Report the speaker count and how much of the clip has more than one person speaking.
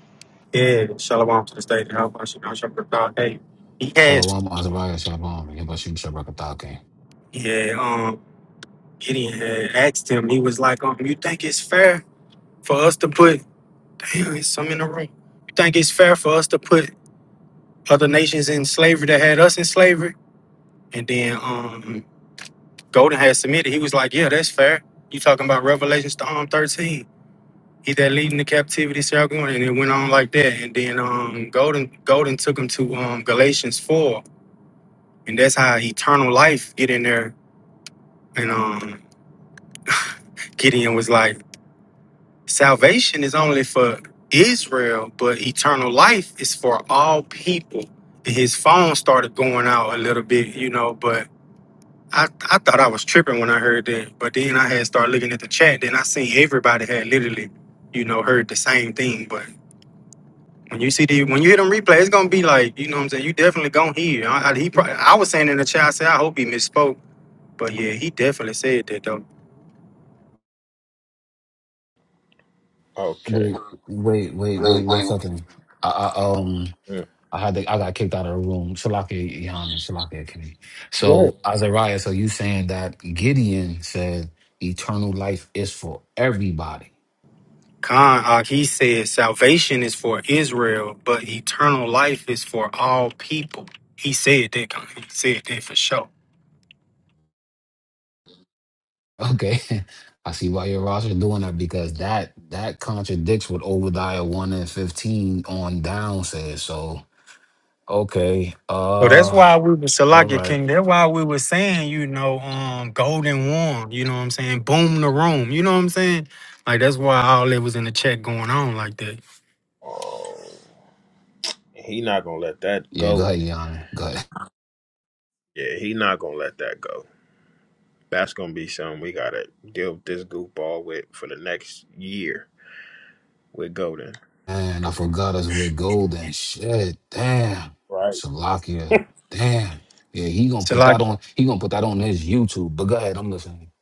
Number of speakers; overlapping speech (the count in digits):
3, about 3%